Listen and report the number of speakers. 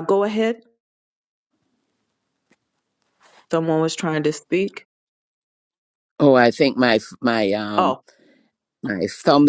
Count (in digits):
2